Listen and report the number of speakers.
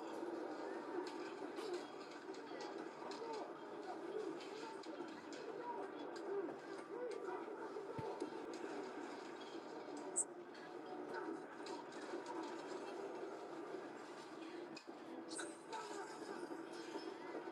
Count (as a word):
zero